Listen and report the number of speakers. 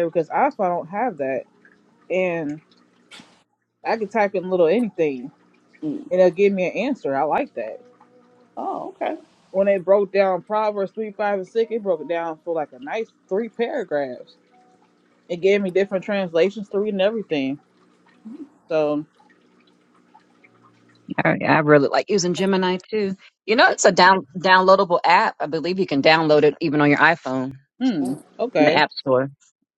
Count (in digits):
3